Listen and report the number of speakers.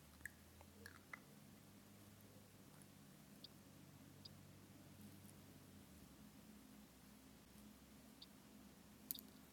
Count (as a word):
zero